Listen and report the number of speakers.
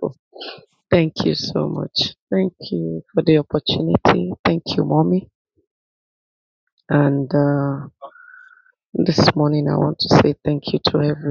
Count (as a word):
one